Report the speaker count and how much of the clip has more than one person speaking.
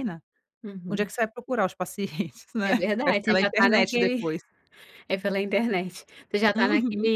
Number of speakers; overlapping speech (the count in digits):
2, about 33%